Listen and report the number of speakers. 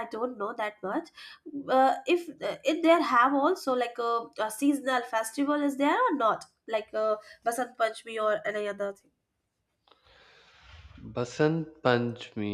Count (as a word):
two